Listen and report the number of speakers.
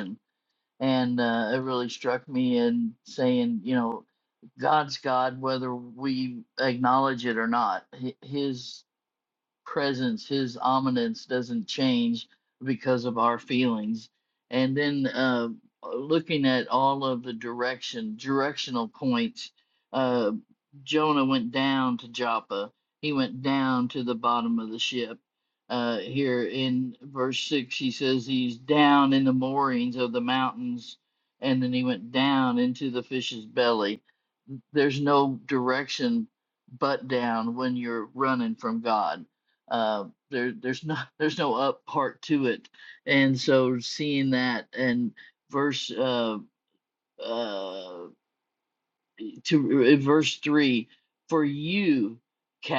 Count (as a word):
one